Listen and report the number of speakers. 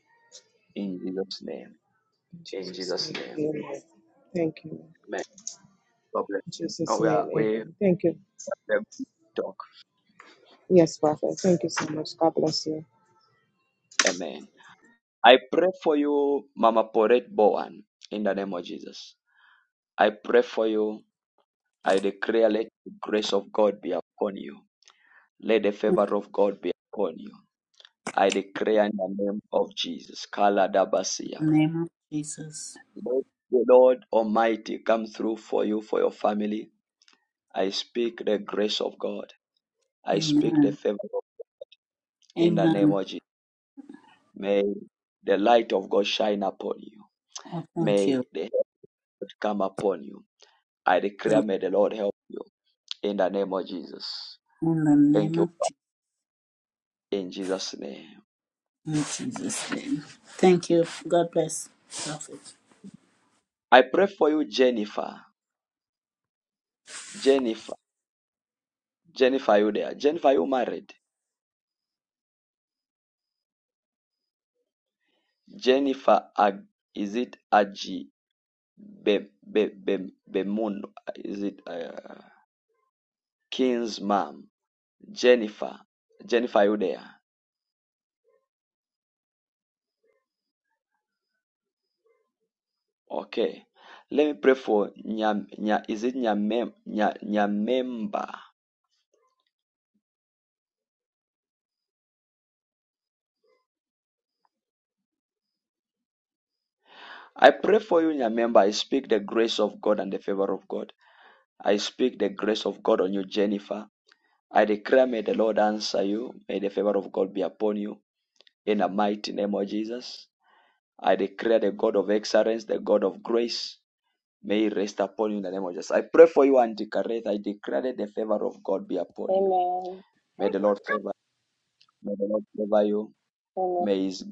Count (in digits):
4